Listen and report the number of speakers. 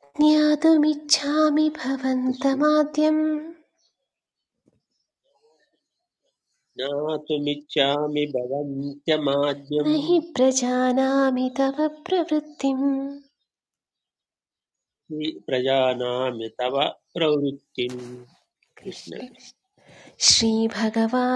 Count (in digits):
2